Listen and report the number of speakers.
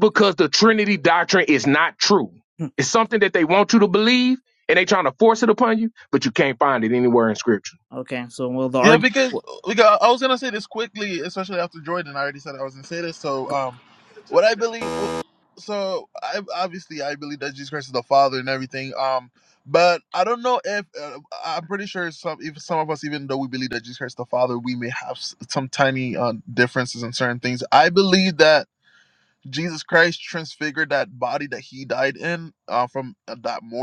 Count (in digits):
3